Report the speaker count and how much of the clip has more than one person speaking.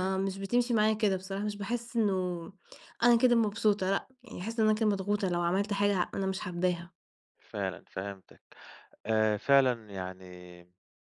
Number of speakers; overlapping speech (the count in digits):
2, about 1%